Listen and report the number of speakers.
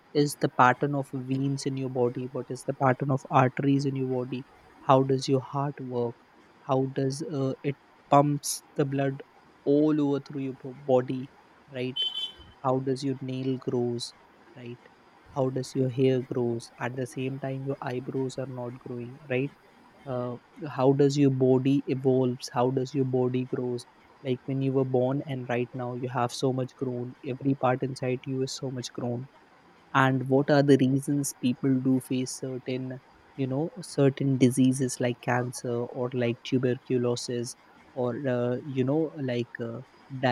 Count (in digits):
1